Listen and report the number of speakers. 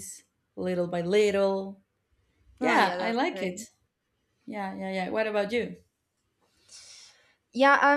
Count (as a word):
two